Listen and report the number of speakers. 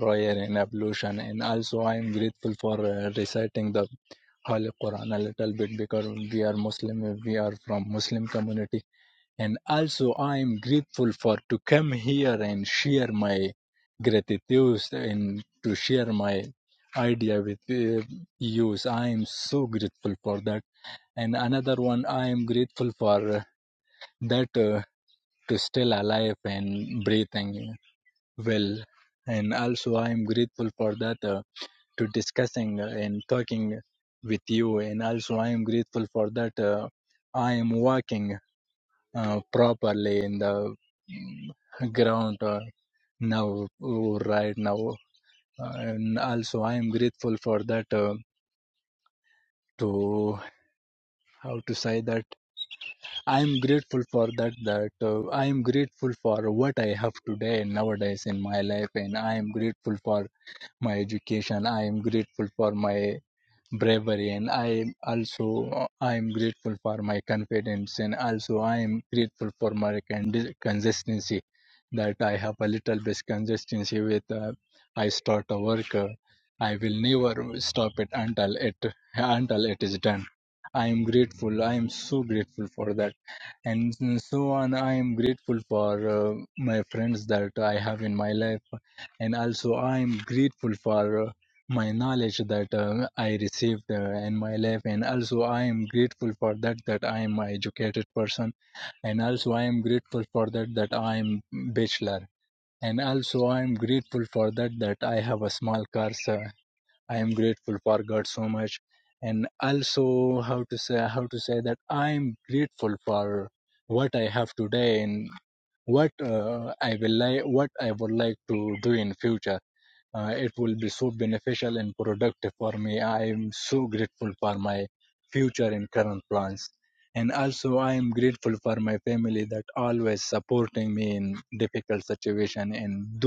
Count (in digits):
1